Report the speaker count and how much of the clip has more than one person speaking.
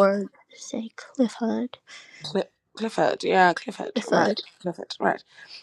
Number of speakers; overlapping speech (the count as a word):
two, about 10%